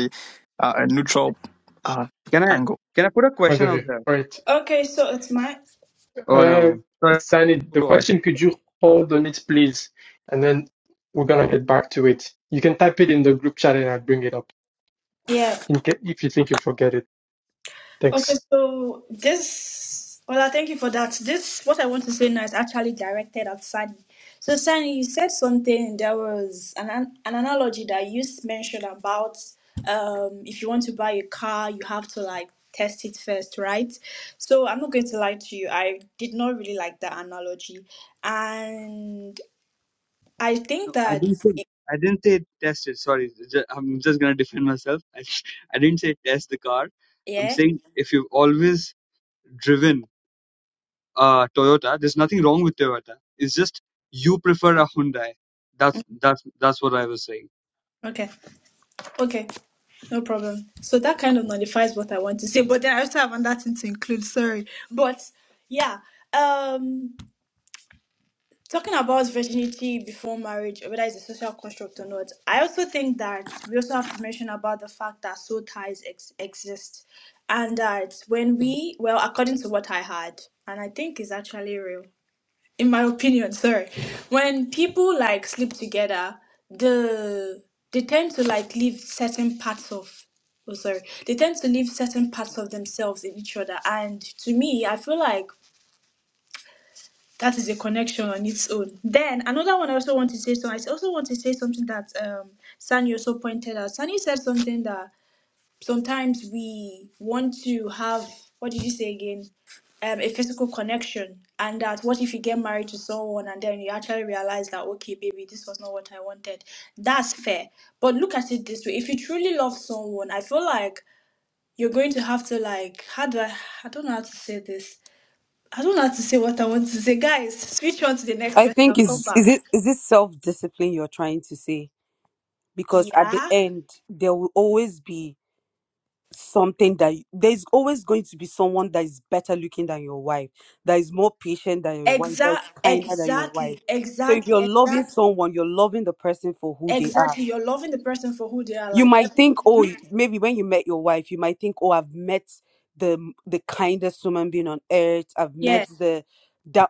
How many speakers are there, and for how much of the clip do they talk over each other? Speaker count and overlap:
5, about 5%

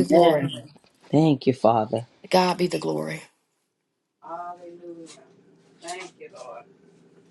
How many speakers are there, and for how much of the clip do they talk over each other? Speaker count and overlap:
3, about 7%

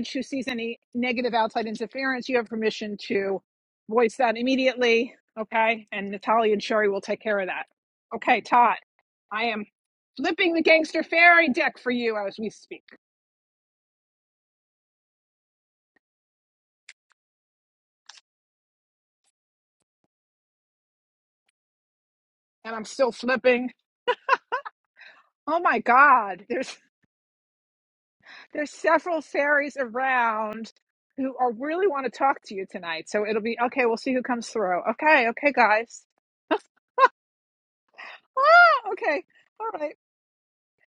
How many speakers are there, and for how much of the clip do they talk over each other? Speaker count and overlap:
1, no overlap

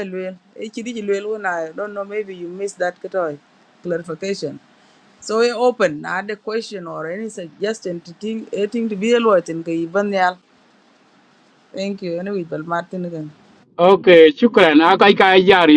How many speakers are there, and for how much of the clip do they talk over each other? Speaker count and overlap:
2, no overlap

